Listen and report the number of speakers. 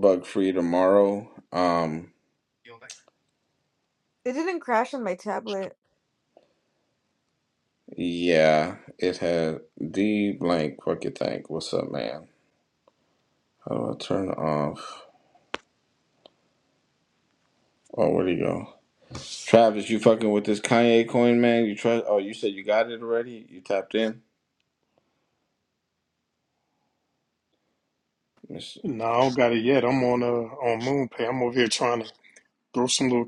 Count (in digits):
3